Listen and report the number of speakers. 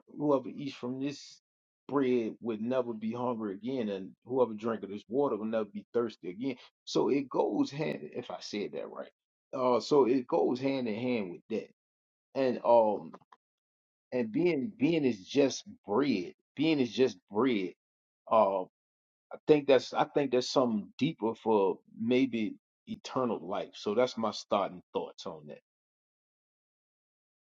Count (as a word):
one